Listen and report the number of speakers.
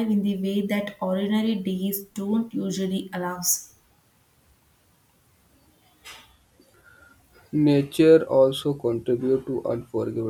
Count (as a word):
two